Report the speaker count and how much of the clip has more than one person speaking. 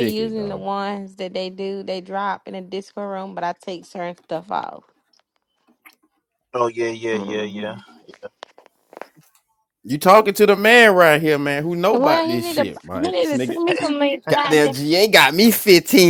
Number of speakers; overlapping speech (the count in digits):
3, about 21%